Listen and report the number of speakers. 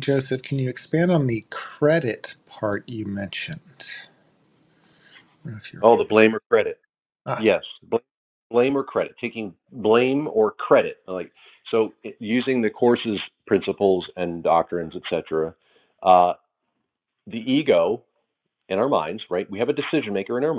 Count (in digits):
2